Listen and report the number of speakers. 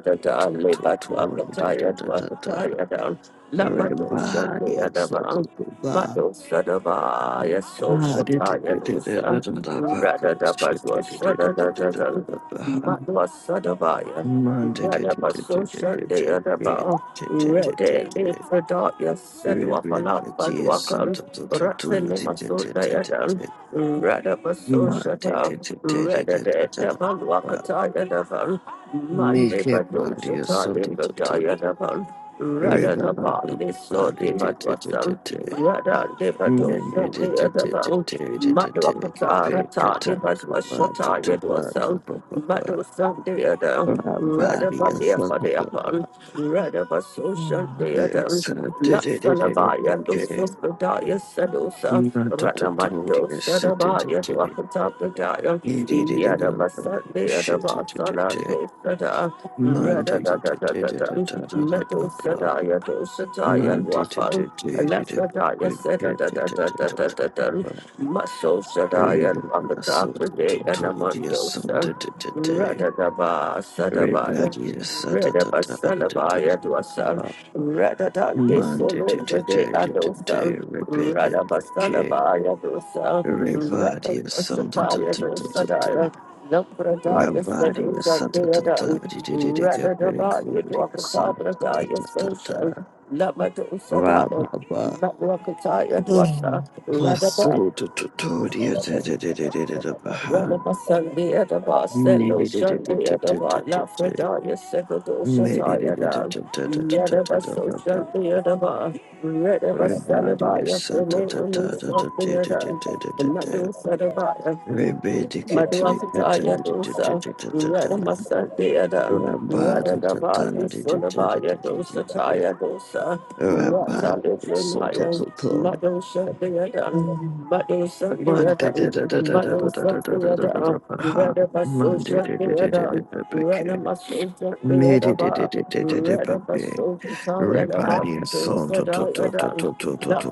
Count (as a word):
two